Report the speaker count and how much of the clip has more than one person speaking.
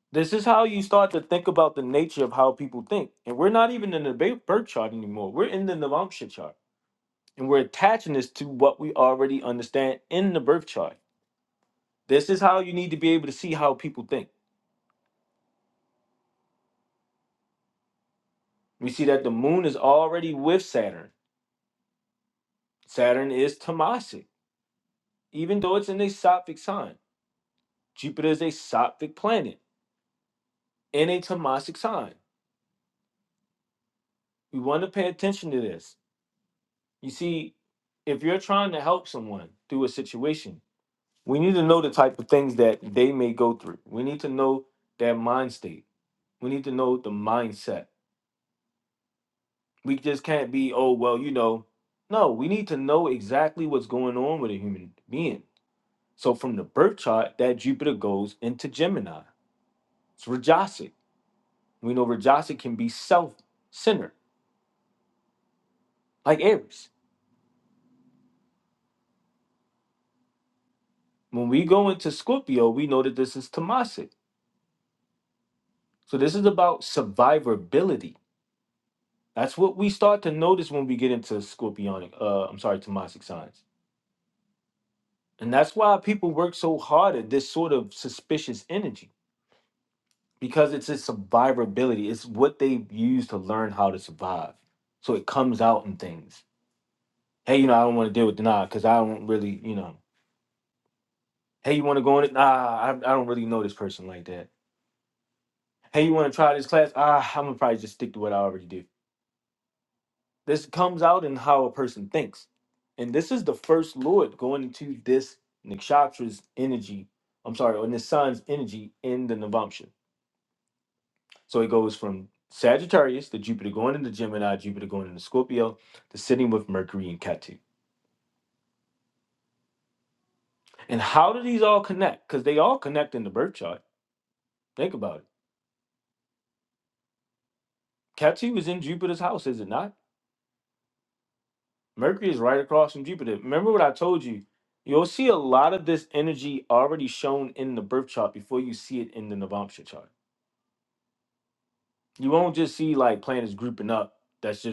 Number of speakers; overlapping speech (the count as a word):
one, no overlap